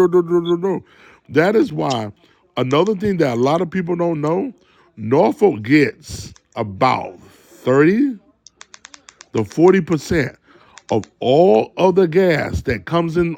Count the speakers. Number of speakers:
1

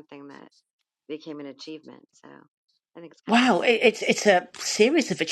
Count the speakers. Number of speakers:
2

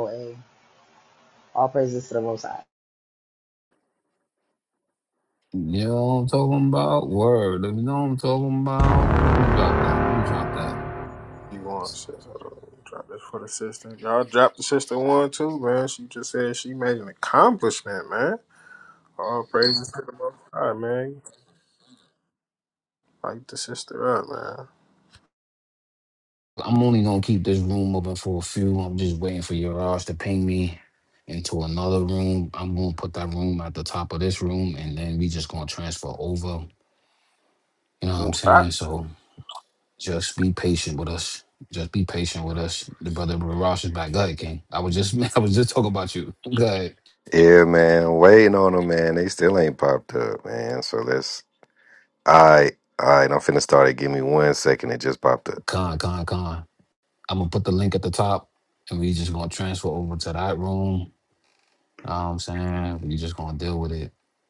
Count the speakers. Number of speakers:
4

